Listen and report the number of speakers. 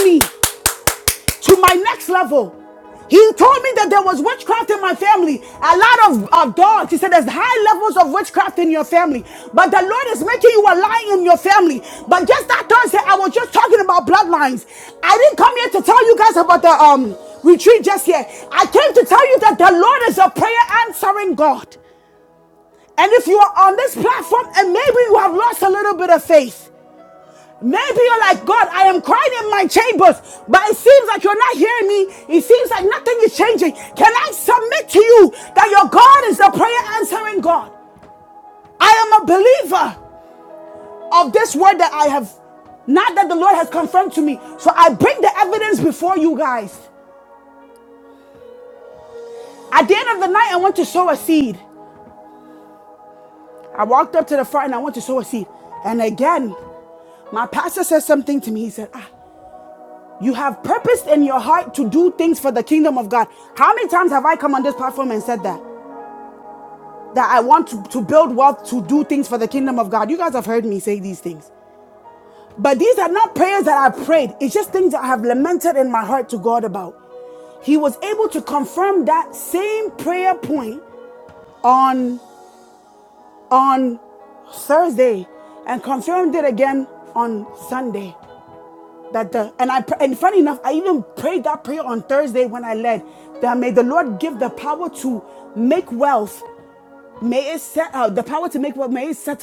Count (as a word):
one